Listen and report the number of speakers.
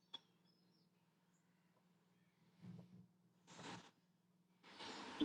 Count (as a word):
zero